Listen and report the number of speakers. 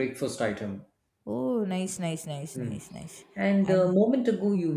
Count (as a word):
two